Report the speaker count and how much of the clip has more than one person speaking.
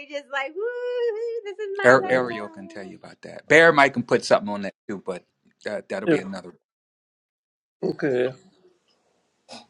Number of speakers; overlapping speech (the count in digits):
3, about 7%